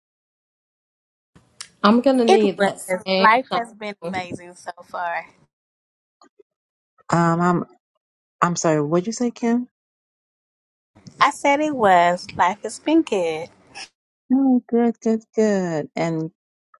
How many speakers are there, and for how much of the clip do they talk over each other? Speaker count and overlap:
three, about 9%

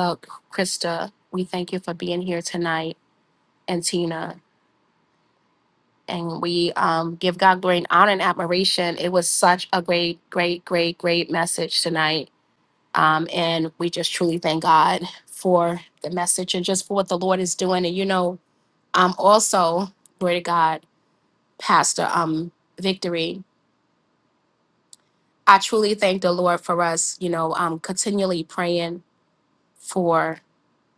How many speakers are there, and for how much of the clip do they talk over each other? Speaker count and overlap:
one, no overlap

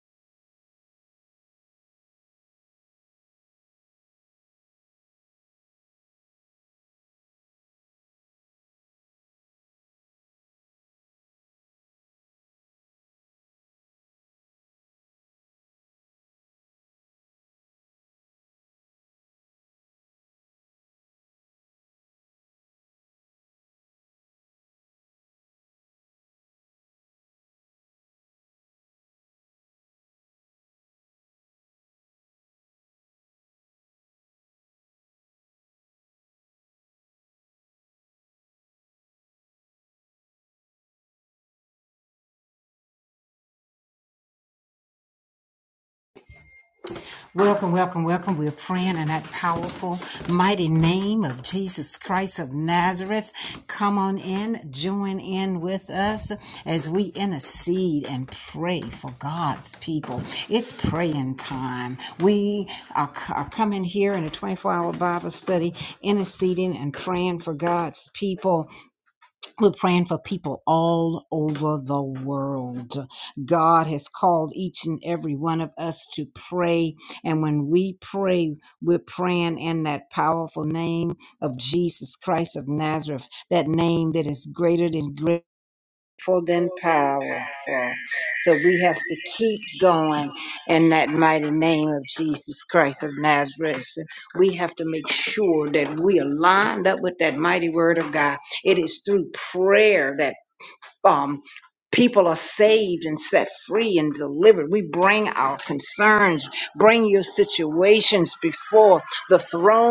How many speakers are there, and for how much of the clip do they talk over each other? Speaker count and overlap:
one, no overlap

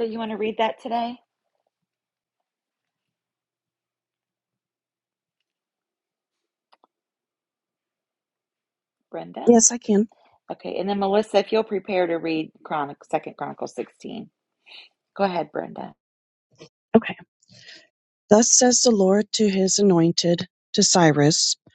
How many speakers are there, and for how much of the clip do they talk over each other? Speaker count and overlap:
two, under 1%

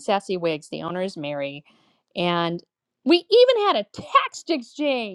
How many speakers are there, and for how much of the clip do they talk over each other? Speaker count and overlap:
one, no overlap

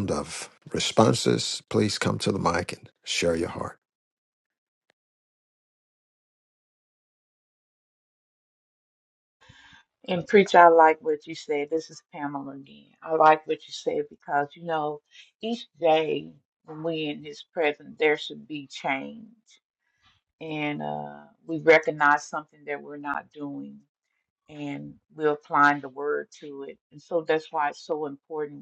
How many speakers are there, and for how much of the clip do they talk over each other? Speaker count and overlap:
two, no overlap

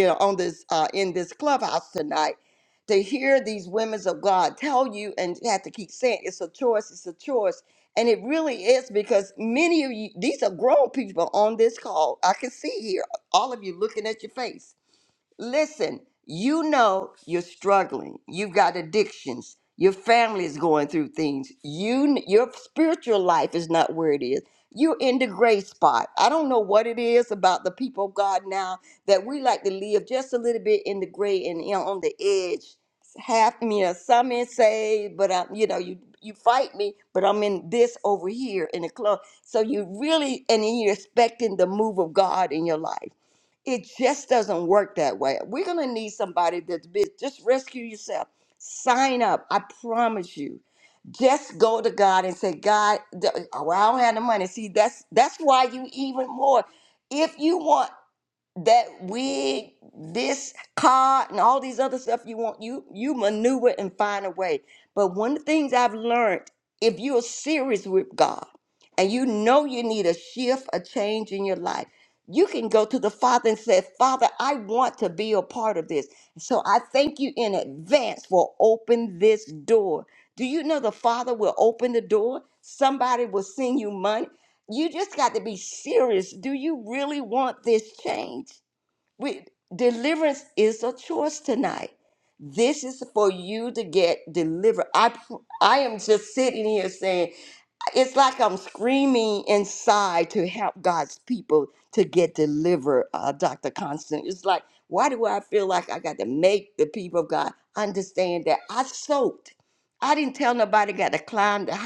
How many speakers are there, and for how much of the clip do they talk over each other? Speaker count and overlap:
one, no overlap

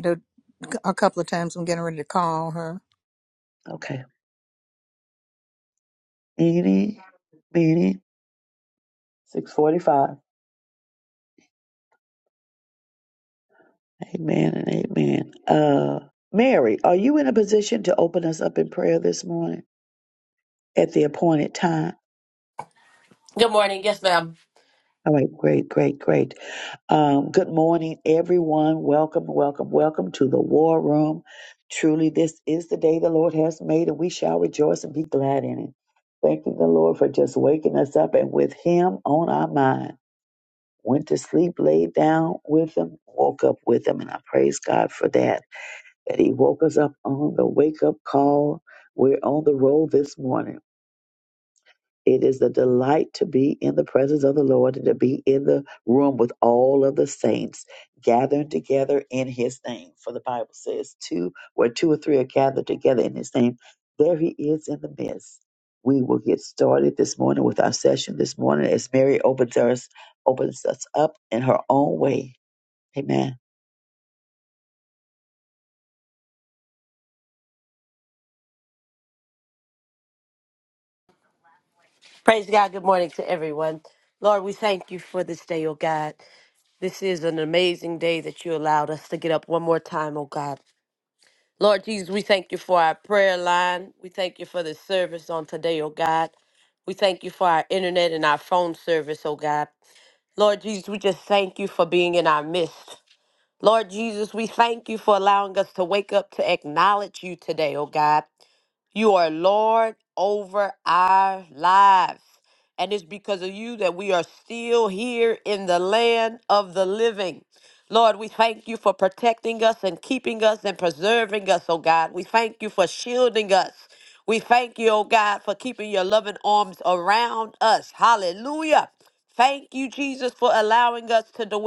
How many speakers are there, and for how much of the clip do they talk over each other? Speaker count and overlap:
three, no overlap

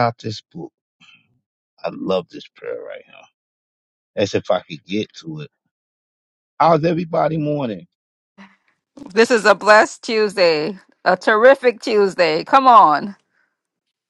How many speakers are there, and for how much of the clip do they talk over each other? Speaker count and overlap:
two, no overlap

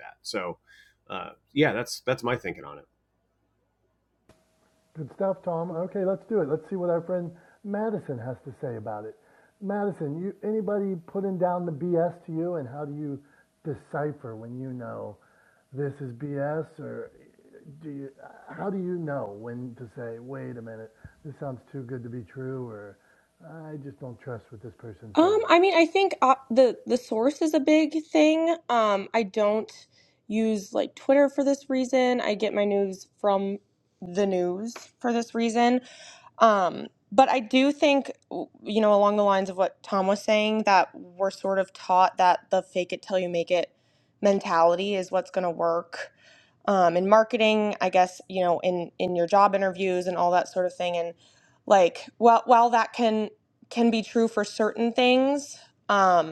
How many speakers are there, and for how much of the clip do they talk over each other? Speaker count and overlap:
three, about 1%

